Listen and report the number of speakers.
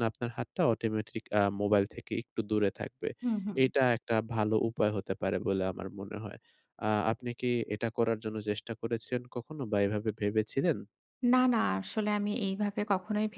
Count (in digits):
2